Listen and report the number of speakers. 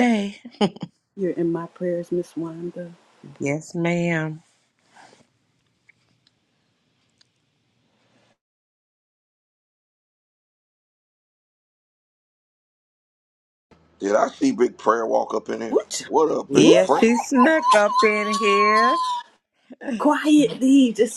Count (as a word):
three